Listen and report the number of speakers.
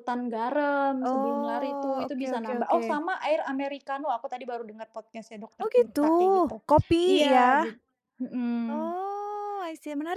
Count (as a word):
two